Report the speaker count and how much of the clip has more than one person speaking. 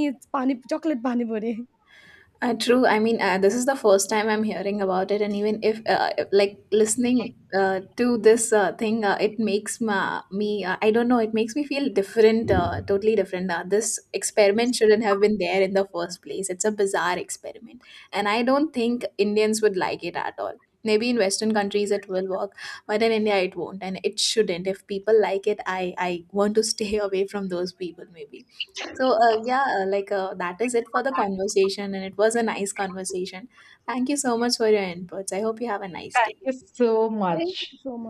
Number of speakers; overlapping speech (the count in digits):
3, about 2%